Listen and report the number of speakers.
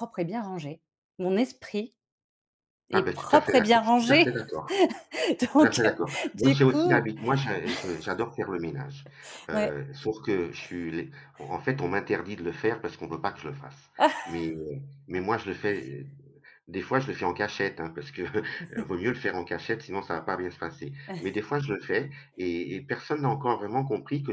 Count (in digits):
2